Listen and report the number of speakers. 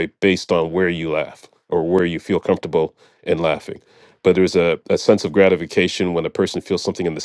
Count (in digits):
1